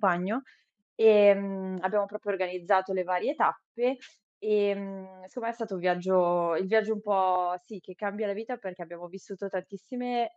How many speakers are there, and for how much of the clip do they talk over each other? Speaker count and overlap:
one, no overlap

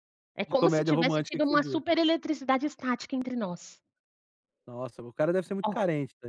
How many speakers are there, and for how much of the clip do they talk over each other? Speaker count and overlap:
two, about 24%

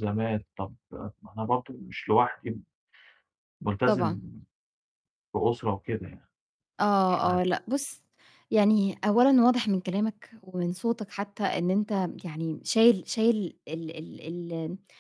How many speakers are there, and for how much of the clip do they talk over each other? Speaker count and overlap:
two, about 4%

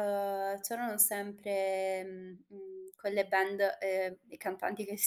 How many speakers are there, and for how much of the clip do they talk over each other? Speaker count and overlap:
one, no overlap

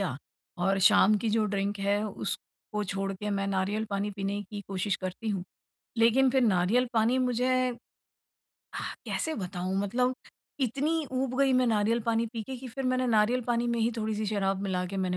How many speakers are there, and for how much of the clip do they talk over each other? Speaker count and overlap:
one, no overlap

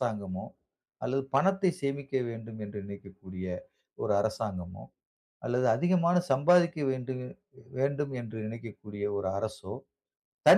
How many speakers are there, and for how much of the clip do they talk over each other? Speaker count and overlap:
one, no overlap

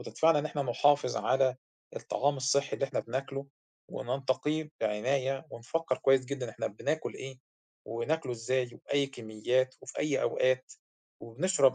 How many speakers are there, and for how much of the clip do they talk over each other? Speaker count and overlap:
one, no overlap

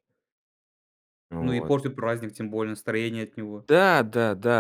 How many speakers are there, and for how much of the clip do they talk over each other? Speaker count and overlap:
two, about 7%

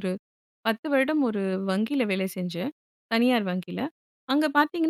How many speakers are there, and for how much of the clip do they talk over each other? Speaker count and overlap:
one, no overlap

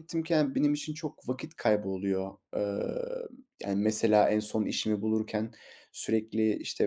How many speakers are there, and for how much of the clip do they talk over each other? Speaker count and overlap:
one, no overlap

